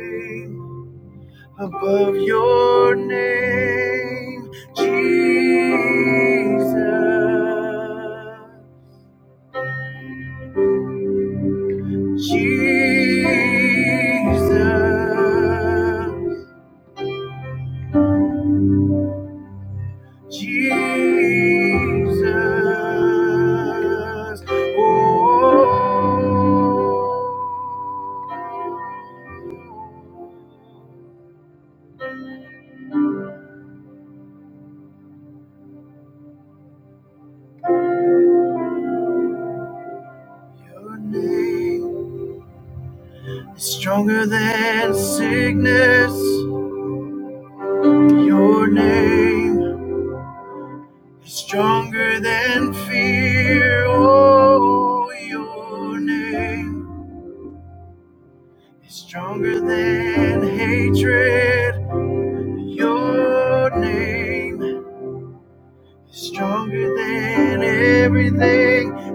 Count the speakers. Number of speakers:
1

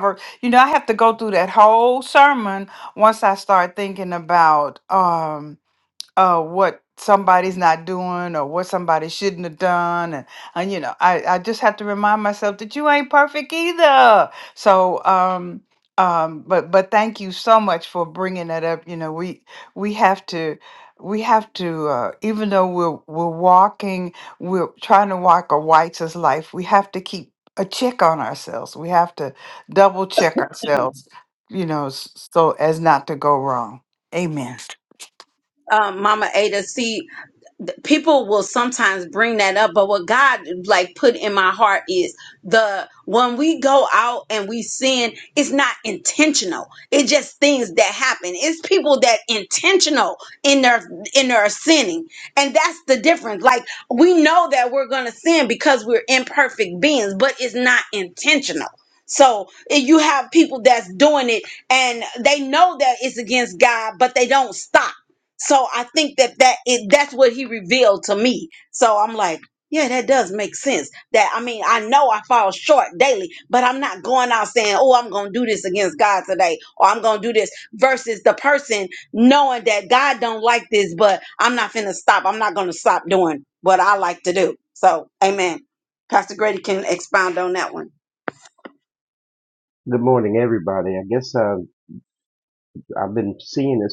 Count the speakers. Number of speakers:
3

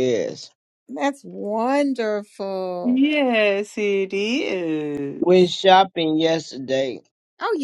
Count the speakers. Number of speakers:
3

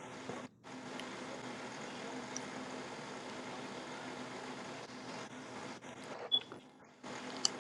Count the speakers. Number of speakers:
0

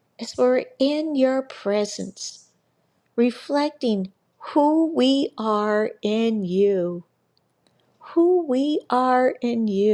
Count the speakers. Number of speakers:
1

